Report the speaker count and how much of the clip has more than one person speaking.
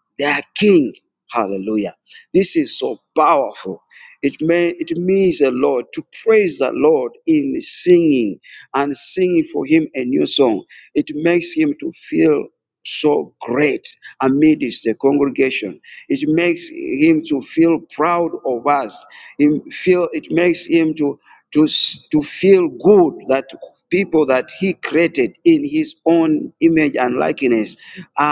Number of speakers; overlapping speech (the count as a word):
one, no overlap